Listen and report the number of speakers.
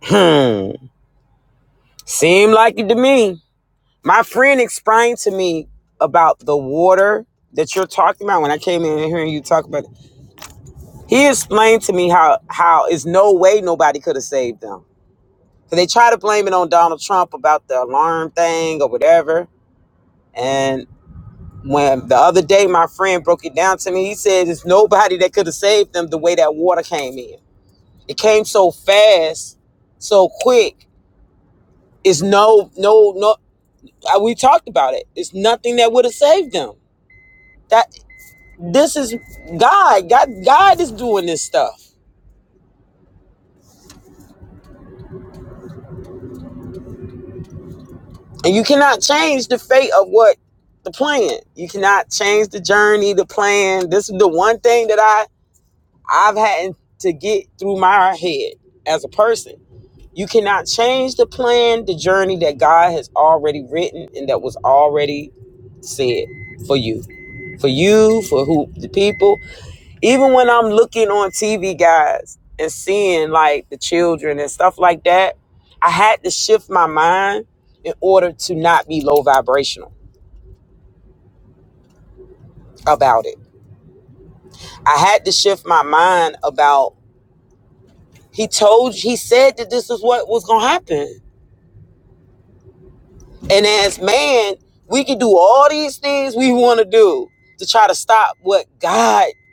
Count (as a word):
one